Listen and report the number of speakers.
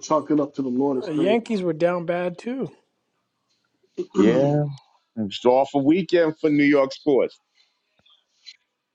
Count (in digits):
3